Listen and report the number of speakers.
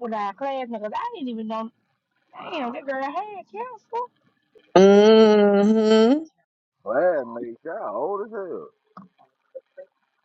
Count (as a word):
three